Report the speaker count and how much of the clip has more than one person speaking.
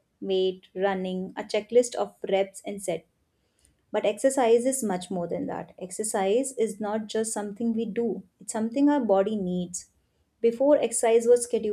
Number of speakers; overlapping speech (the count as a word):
one, no overlap